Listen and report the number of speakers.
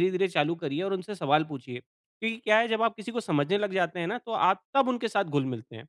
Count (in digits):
1